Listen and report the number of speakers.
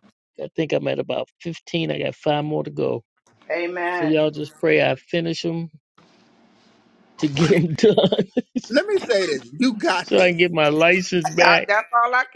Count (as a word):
three